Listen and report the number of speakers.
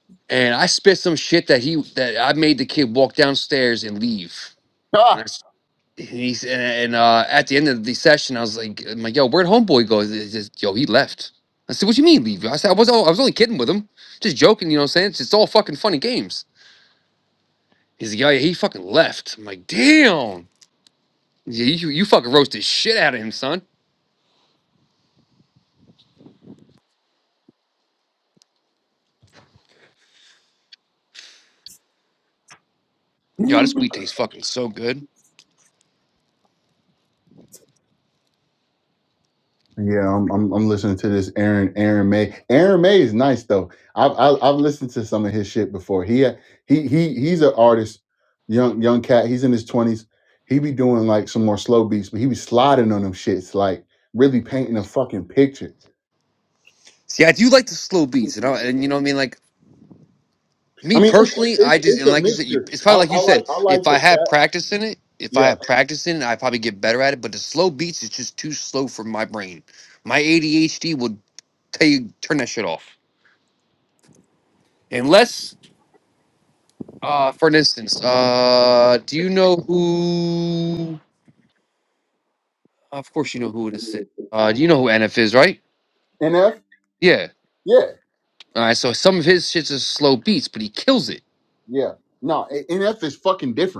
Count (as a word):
two